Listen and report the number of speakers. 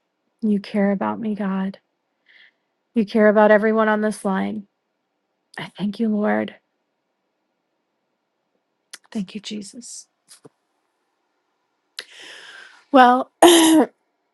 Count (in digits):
1